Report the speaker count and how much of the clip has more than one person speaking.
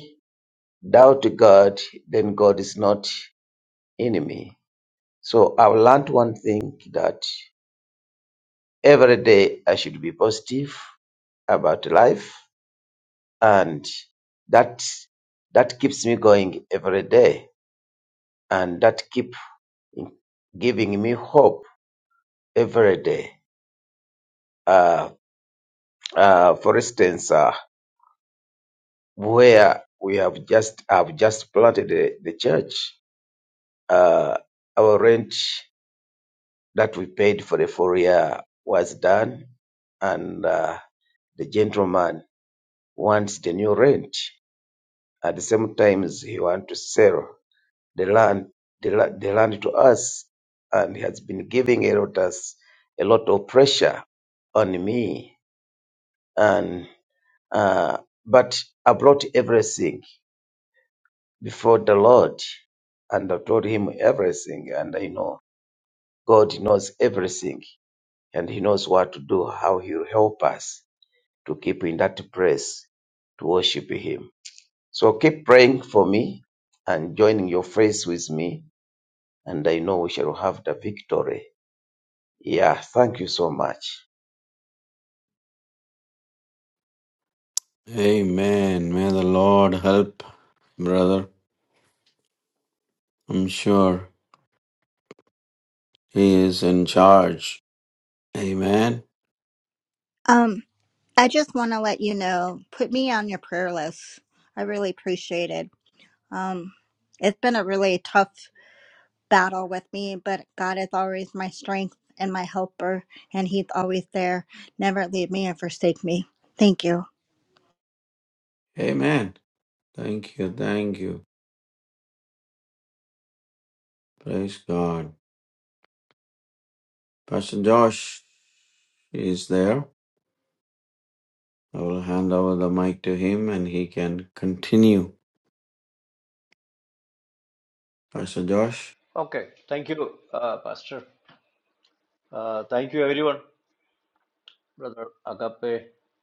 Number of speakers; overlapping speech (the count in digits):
4, no overlap